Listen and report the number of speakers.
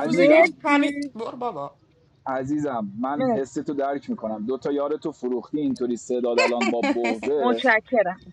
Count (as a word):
three